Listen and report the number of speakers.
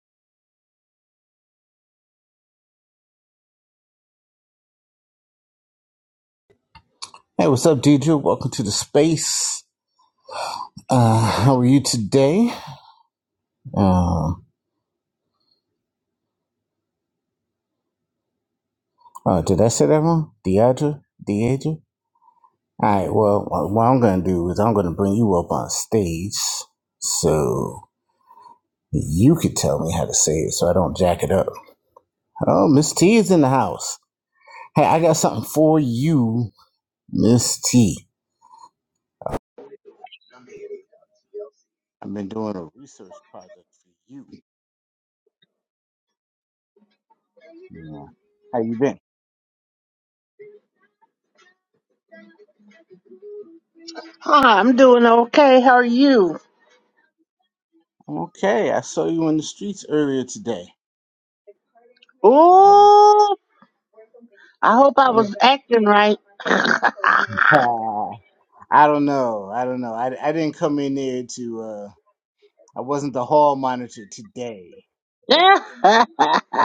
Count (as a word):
two